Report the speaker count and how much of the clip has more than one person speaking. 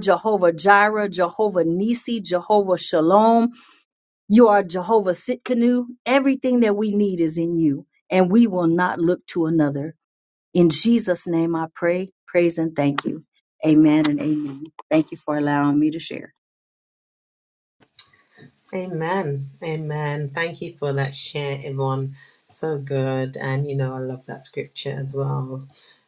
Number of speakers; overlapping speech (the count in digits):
2, no overlap